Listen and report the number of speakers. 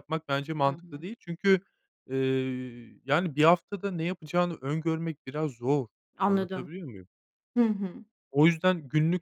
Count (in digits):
2